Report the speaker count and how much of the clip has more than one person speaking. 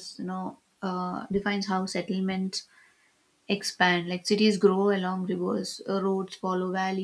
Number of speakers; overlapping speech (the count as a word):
one, no overlap